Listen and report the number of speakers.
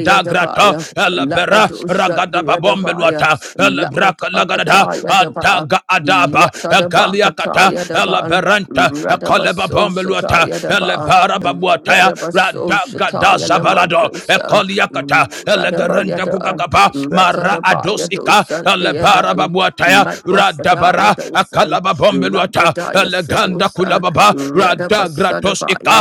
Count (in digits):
2